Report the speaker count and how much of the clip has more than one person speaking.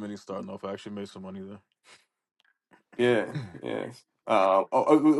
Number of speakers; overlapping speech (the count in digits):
2, no overlap